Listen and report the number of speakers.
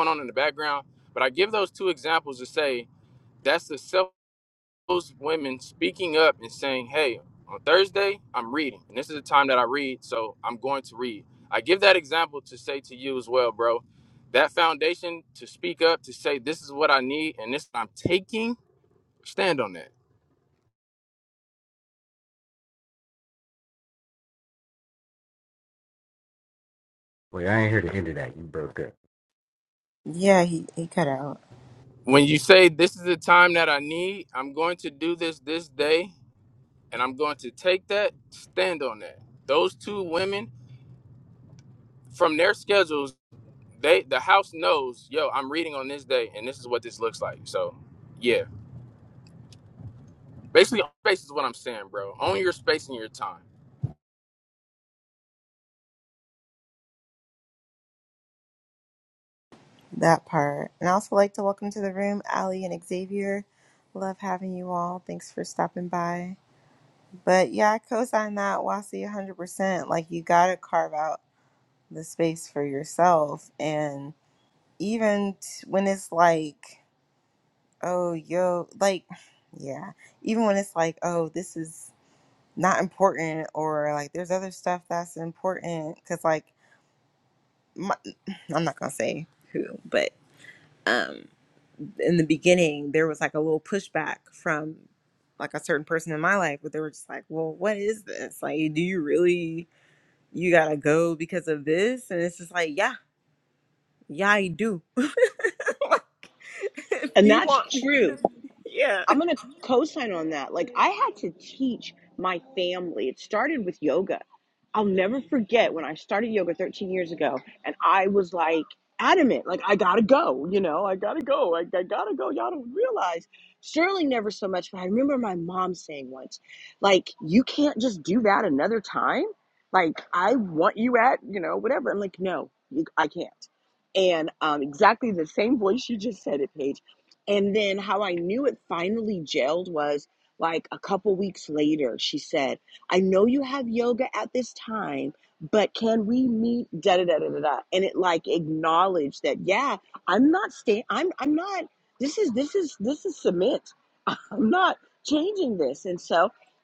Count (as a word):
four